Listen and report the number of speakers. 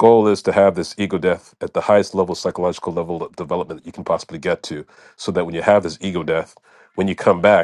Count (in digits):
1